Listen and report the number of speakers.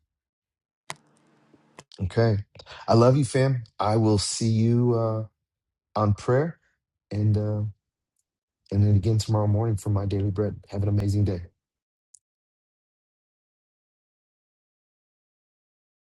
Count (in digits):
1